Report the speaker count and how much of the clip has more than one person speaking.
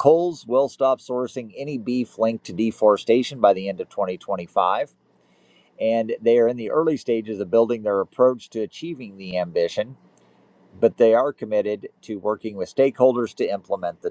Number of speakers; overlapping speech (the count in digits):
1, no overlap